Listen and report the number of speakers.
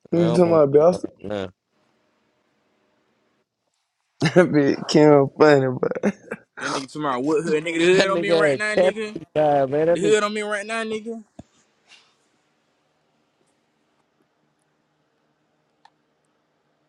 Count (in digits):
3